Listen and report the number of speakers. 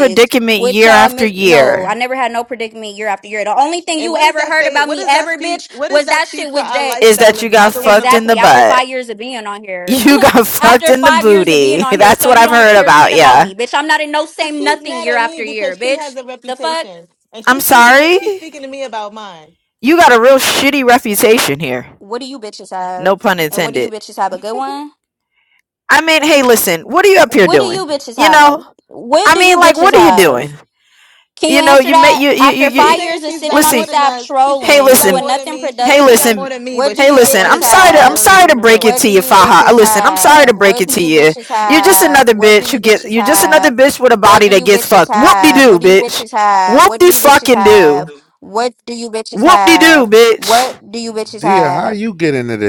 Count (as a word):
four